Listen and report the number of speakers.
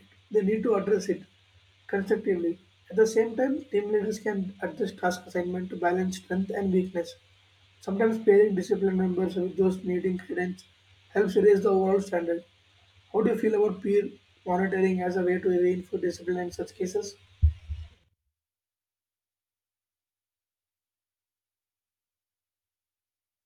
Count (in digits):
1